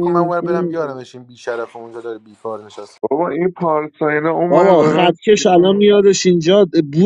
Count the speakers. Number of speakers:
3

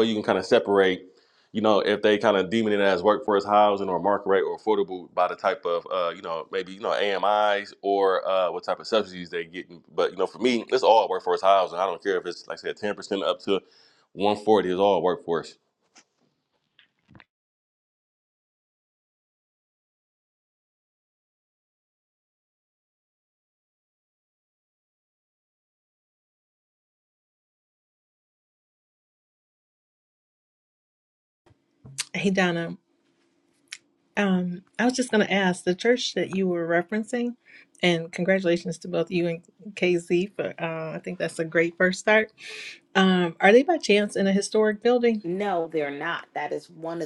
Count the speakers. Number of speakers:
3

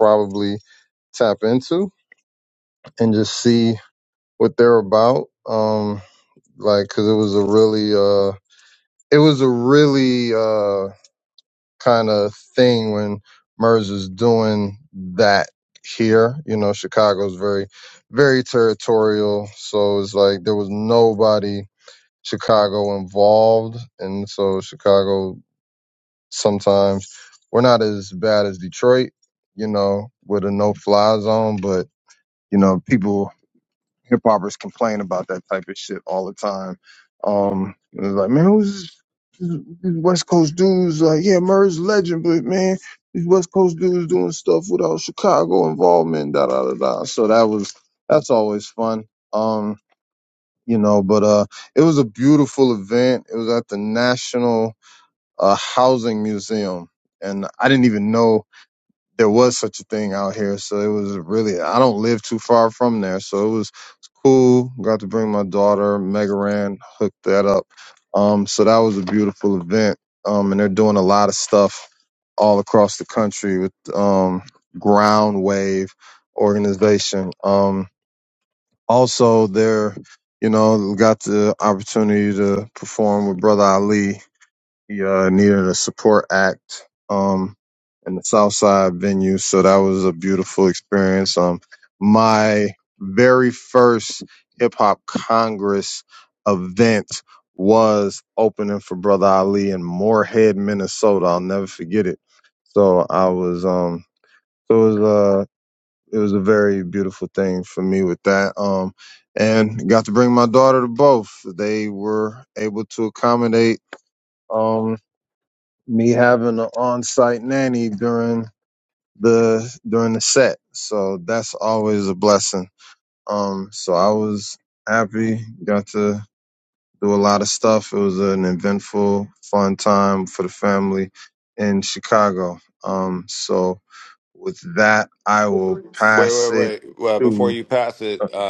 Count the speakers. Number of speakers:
2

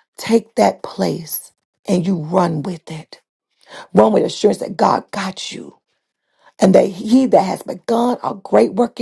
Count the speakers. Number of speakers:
1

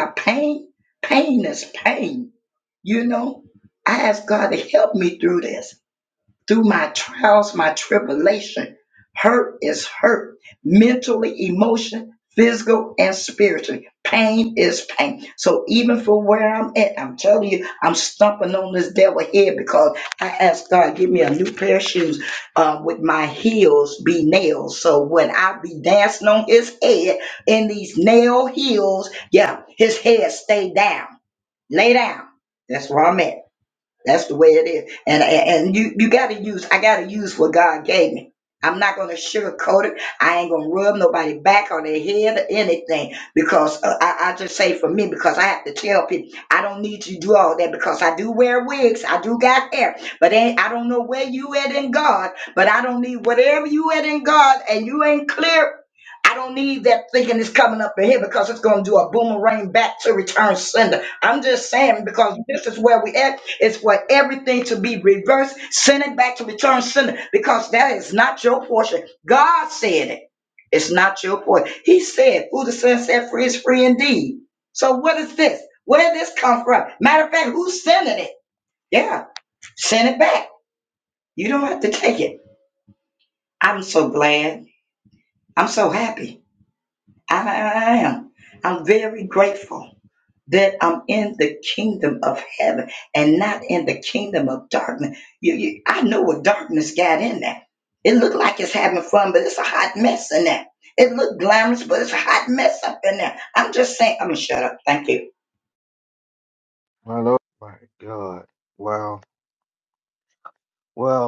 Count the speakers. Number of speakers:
2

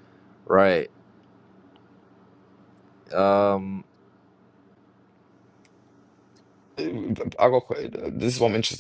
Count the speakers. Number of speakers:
2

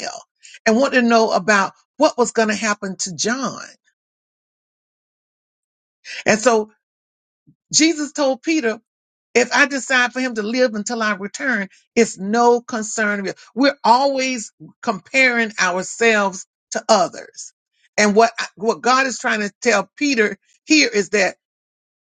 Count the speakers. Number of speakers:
1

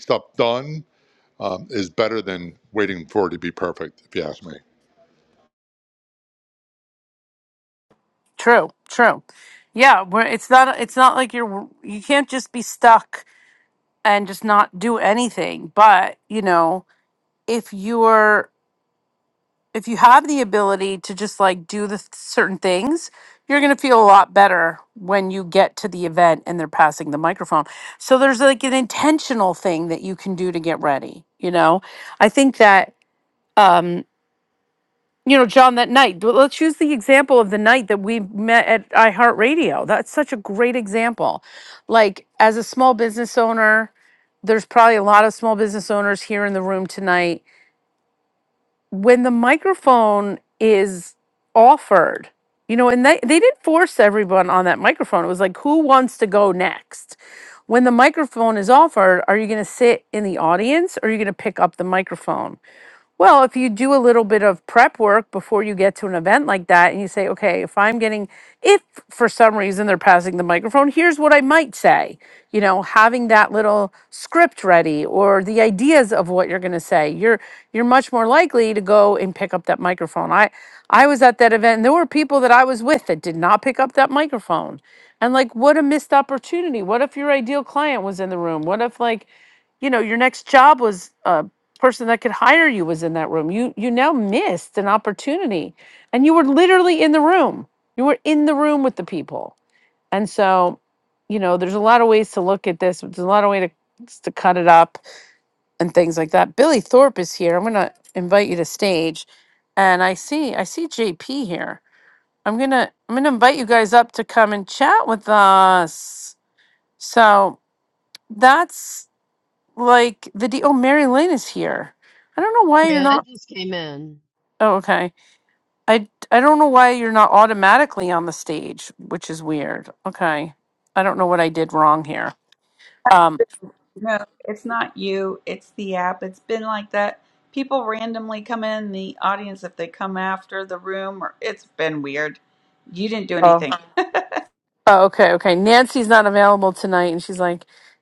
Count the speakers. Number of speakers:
4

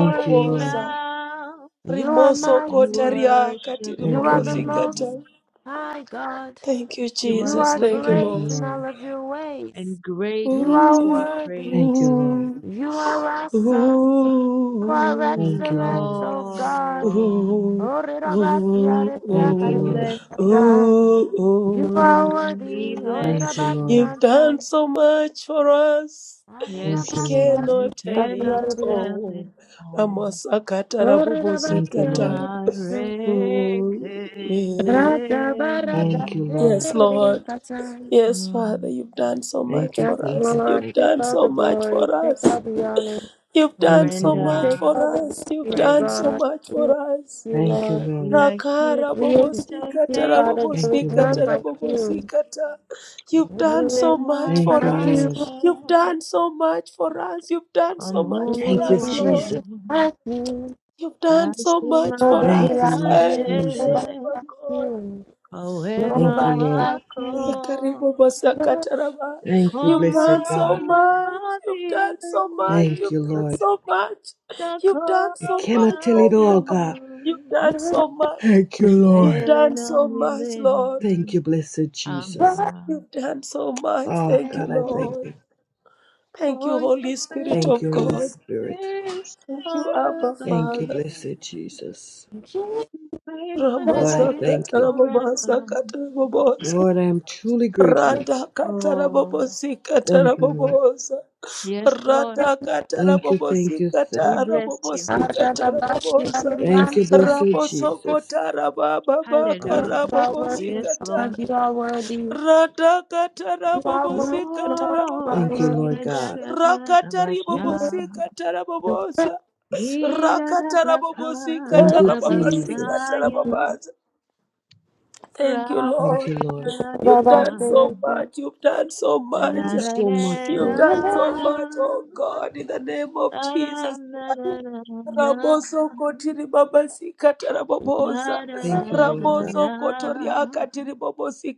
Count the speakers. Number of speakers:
4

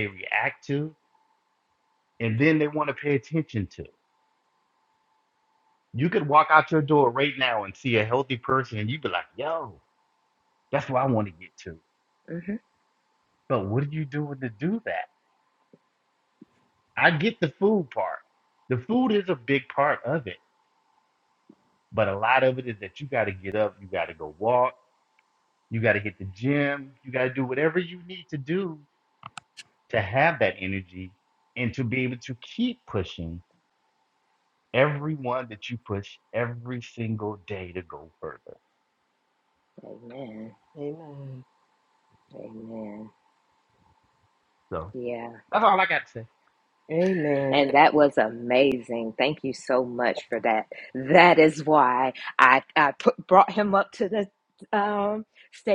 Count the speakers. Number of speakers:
3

